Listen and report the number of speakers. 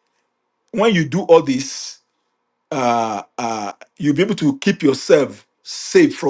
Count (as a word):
one